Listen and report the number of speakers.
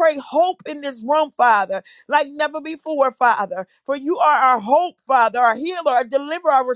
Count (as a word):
one